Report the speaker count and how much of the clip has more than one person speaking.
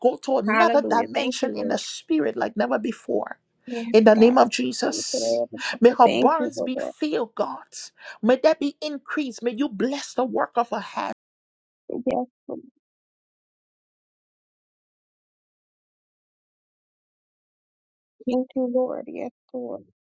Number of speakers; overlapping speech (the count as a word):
two, about 14%